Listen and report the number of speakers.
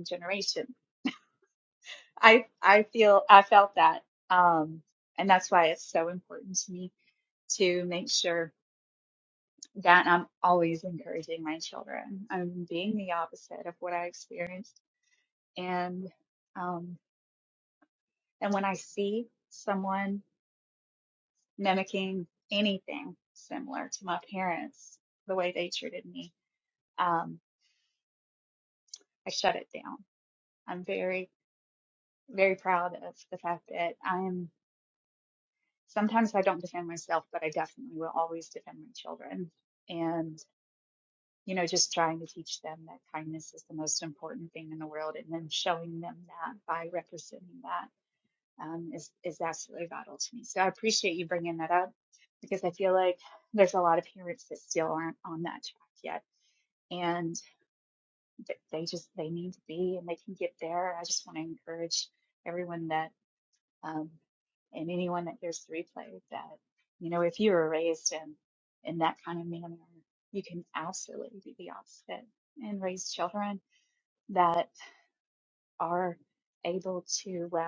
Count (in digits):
1